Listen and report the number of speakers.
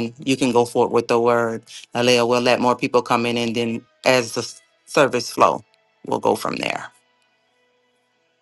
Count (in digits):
1